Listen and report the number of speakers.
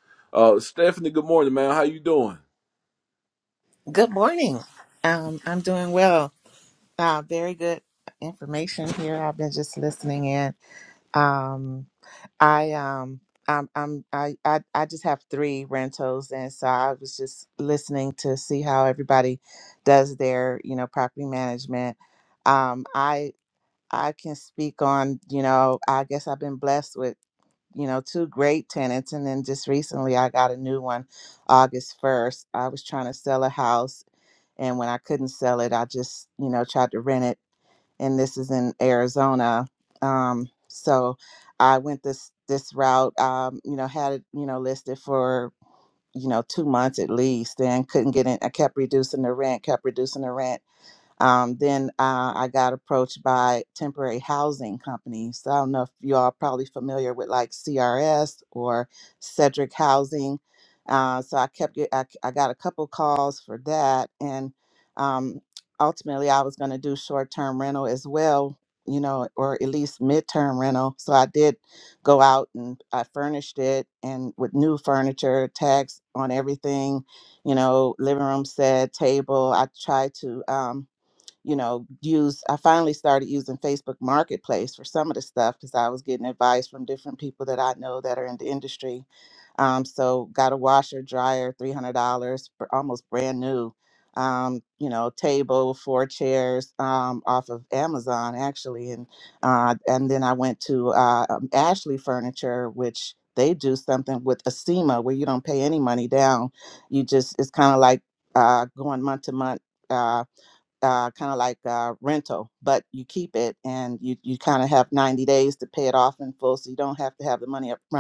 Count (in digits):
2